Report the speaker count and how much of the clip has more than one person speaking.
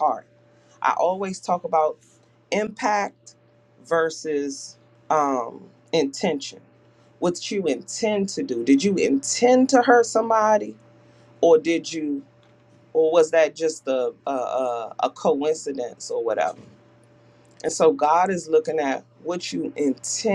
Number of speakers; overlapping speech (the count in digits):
1, no overlap